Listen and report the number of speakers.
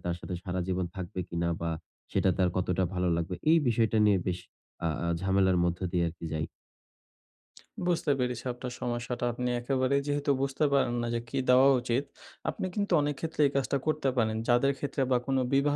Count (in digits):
2